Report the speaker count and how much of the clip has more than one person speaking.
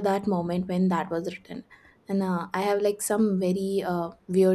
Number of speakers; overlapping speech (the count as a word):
one, no overlap